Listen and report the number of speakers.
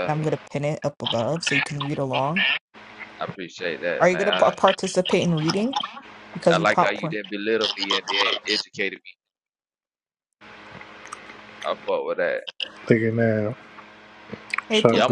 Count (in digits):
3